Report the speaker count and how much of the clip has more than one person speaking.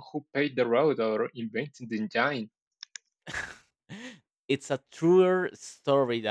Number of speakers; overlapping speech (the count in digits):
2, no overlap